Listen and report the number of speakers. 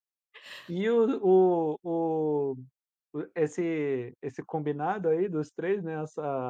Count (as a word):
one